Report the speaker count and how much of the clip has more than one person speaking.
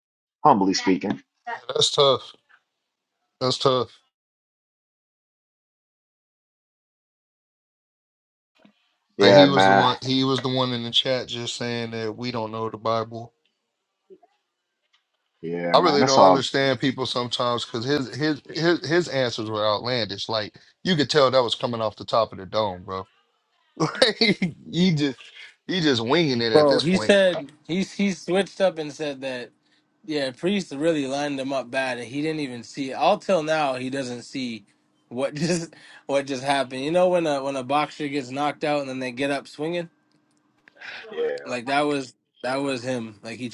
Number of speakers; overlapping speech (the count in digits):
3, about 5%